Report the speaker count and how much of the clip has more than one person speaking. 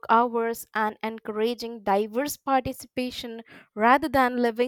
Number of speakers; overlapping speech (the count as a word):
one, no overlap